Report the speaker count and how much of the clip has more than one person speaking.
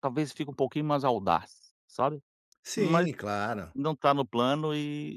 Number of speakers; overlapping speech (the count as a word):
two, about 6%